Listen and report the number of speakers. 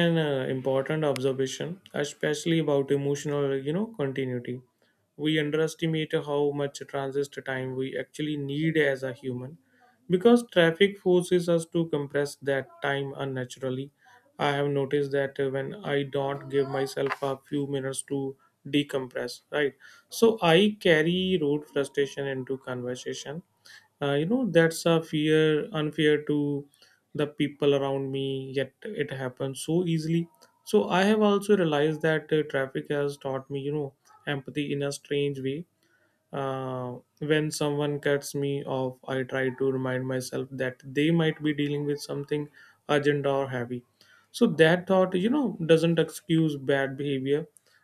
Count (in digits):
1